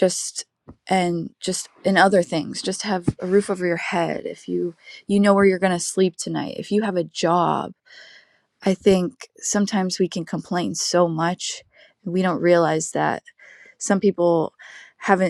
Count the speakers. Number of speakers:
one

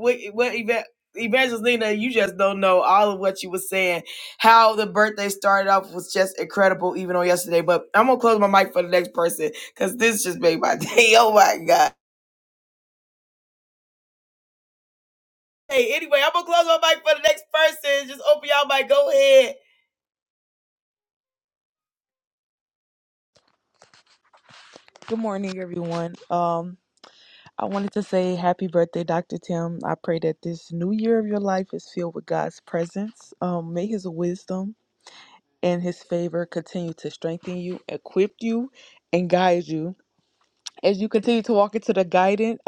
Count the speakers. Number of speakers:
two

